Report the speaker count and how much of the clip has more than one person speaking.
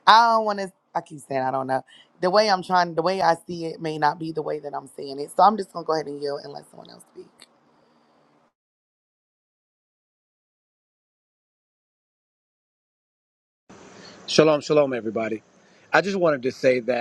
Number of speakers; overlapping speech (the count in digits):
2, no overlap